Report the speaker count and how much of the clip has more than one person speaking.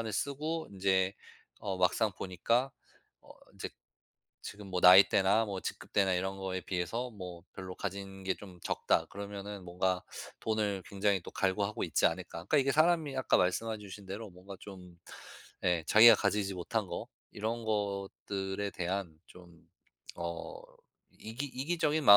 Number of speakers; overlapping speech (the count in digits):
1, no overlap